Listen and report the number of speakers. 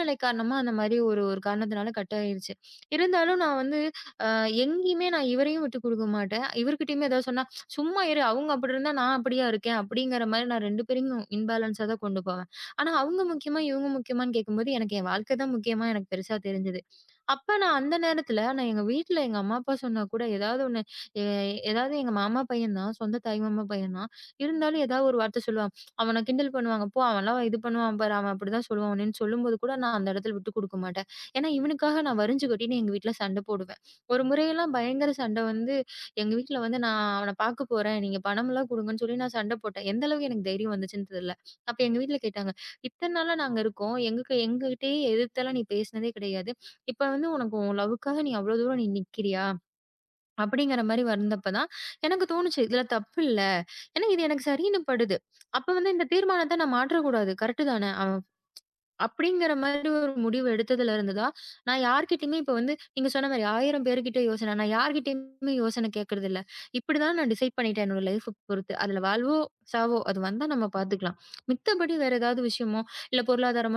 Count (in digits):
1